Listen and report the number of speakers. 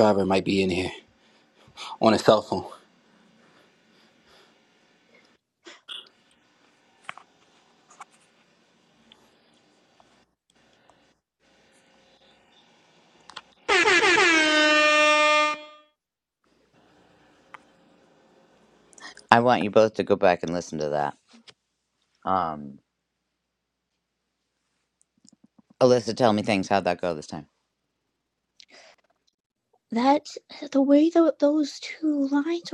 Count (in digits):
3